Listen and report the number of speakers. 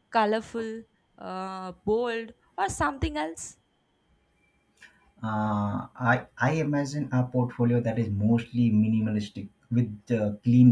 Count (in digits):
2